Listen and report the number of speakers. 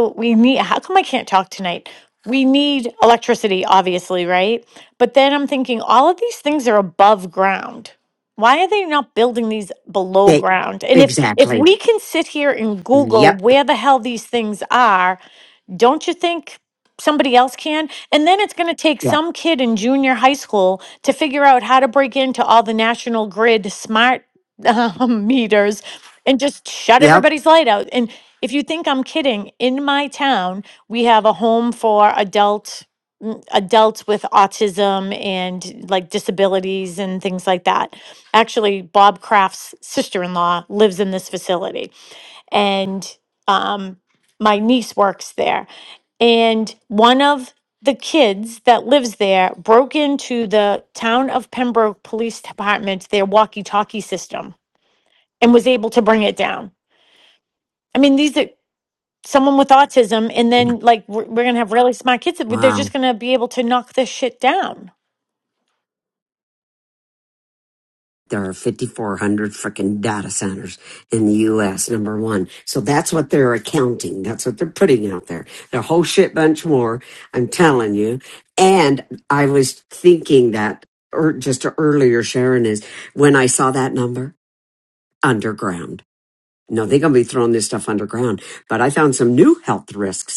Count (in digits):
2